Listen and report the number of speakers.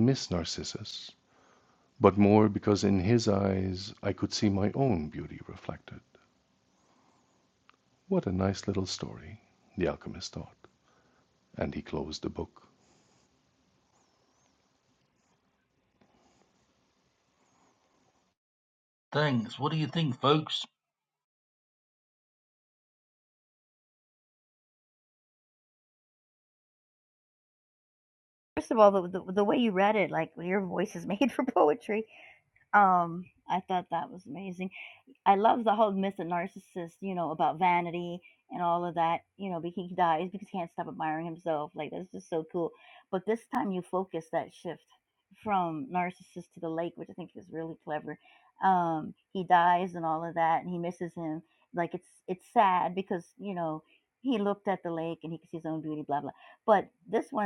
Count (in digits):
3